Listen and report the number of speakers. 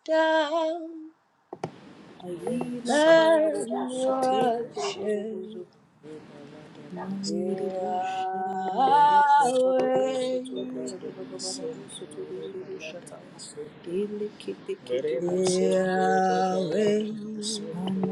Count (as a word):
three